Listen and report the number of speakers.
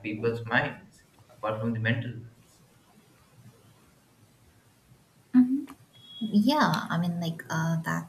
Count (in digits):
2